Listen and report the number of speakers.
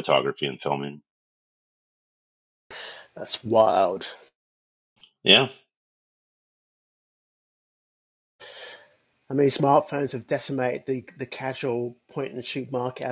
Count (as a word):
two